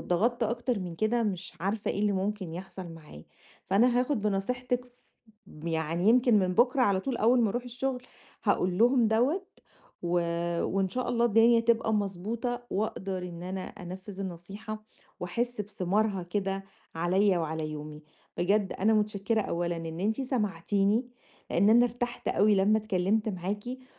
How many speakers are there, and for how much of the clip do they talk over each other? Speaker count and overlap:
one, no overlap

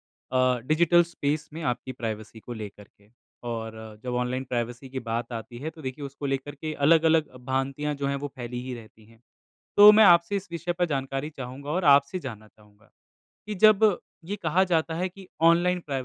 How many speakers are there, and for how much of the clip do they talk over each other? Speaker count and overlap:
one, no overlap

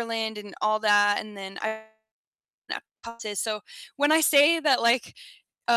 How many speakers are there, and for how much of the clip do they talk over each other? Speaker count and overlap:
one, no overlap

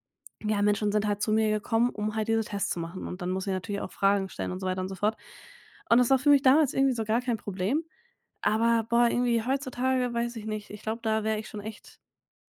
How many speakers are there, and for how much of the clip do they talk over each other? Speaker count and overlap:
one, no overlap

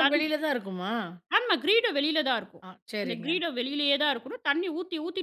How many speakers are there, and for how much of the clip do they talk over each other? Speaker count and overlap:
two, about 11%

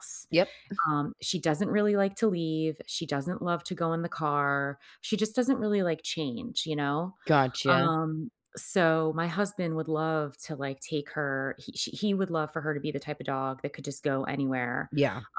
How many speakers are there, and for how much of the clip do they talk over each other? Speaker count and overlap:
two, about 2%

